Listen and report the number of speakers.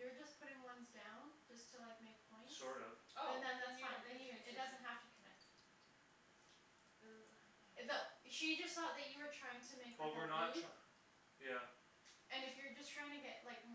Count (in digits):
3